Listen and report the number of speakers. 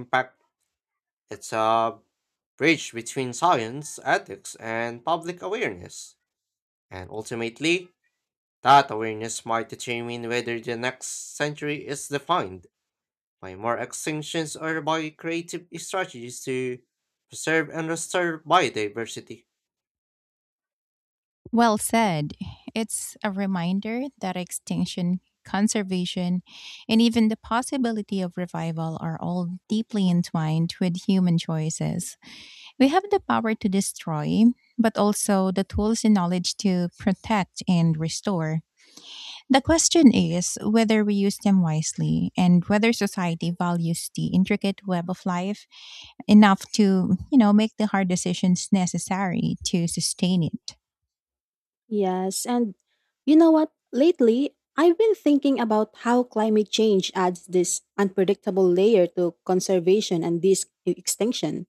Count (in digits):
3